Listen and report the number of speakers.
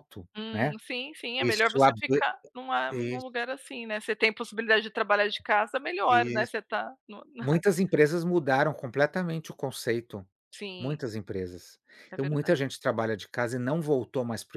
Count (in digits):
2